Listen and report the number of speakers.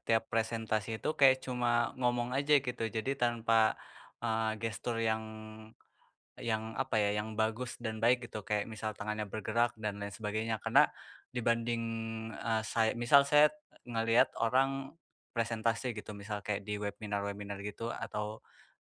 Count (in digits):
1